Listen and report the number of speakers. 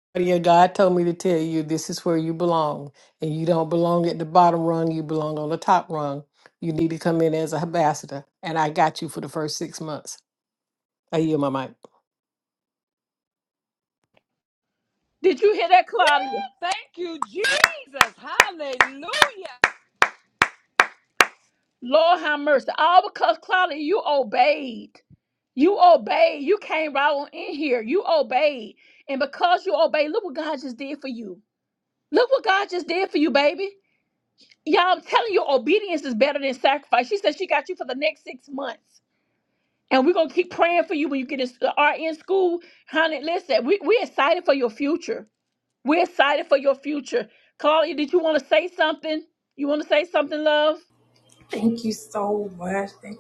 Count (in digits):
4